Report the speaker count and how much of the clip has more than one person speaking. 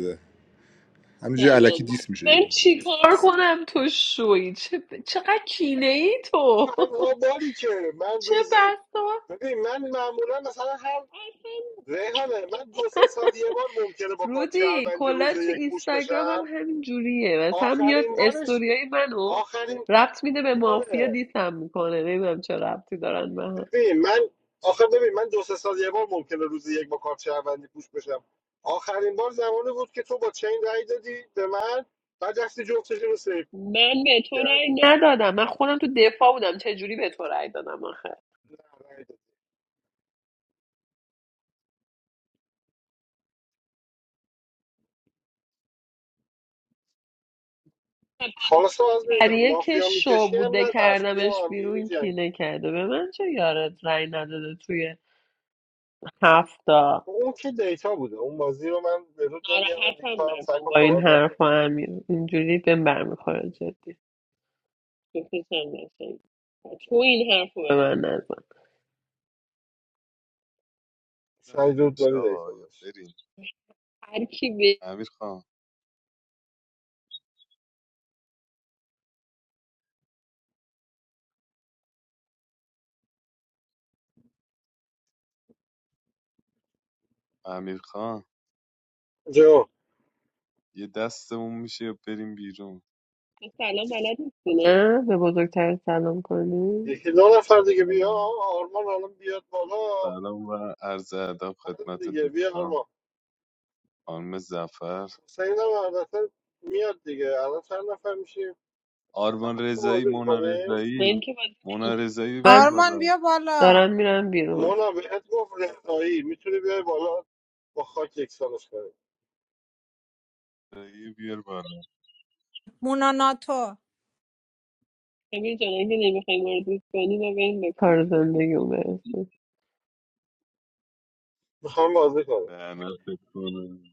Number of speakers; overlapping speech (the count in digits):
5, about 12%